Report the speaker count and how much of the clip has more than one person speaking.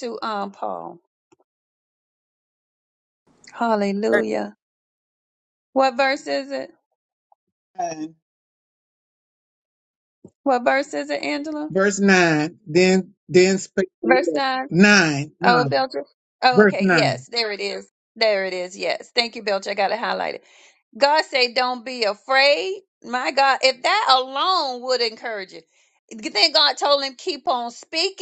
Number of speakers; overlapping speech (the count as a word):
two, about 6%